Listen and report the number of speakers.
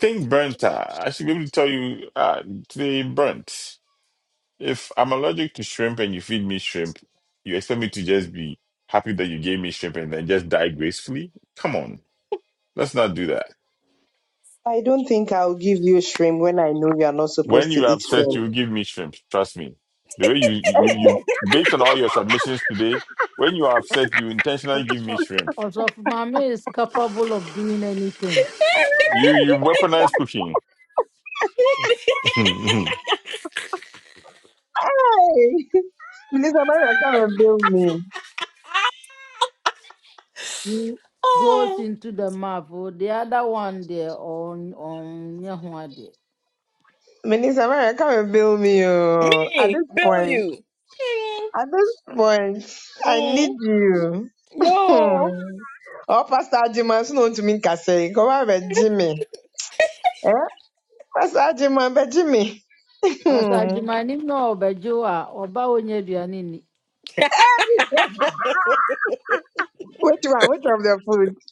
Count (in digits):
4